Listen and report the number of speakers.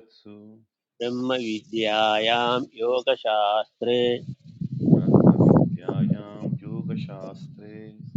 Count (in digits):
2